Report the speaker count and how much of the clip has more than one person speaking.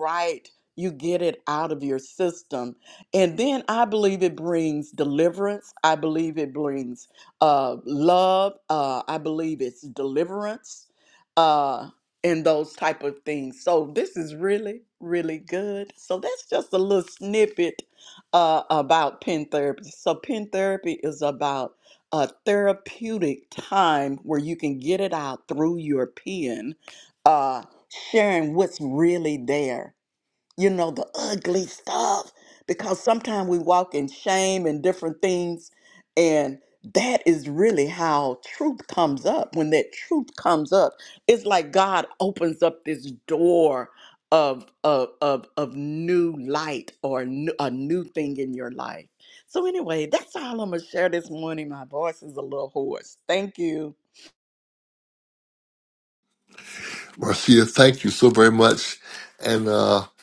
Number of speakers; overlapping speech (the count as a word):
two, no overlap